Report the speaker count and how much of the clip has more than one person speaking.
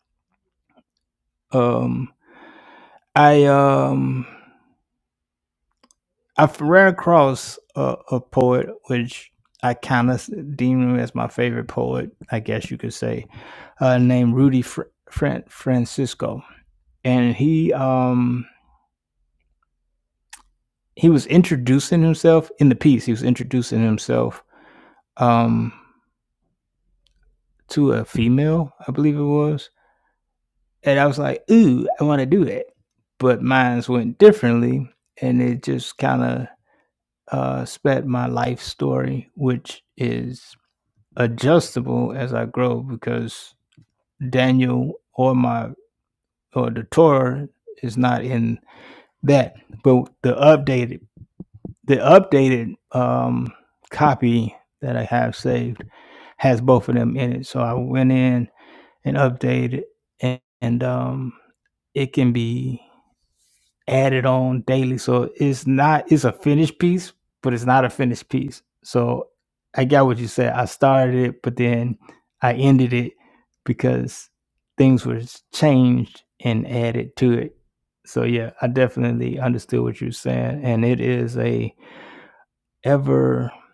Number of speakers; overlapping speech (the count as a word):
one, no overlap